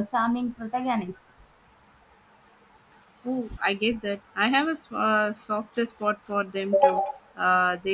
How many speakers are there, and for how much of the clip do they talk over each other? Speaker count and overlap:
2, no overlap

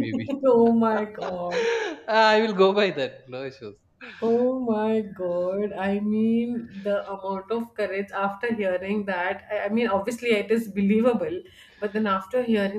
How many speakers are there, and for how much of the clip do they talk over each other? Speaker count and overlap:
2, no overlap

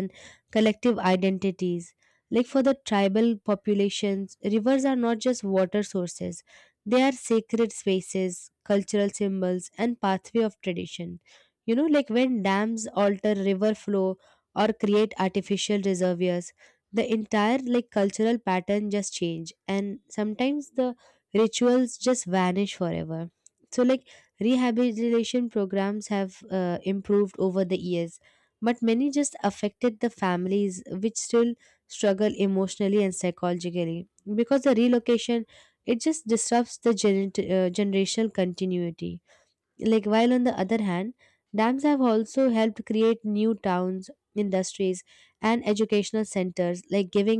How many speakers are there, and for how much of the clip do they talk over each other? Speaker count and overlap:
1, no overlap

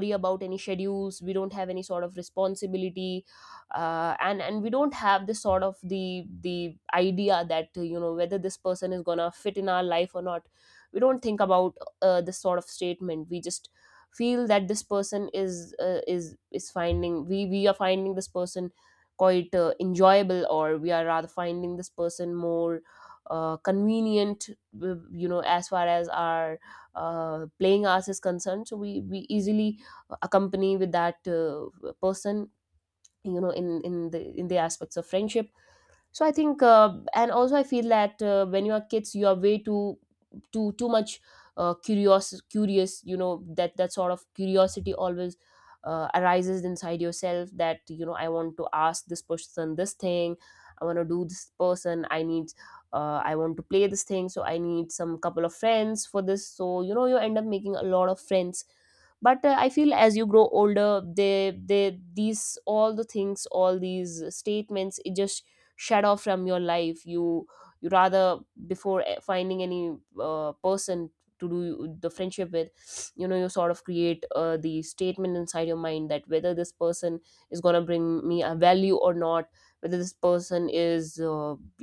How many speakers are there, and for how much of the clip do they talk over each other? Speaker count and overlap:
1, no overlap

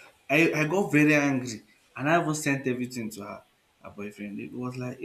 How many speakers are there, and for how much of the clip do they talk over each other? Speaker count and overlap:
1, no overlap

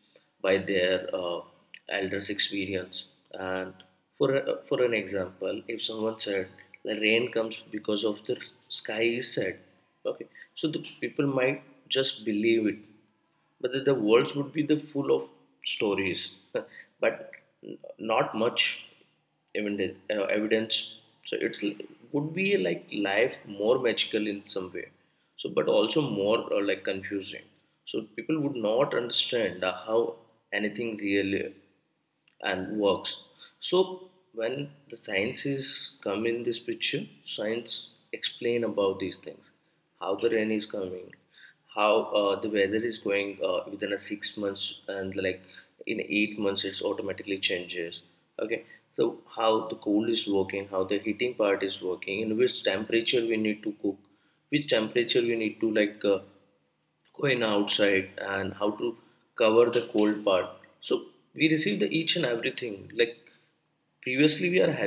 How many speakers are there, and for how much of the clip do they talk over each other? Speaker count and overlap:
1, no overlap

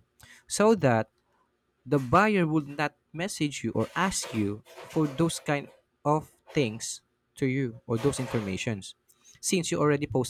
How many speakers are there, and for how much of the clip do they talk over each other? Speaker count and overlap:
1, no overlap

